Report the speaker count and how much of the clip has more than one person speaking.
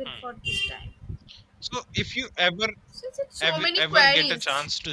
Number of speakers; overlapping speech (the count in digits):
2, about 31%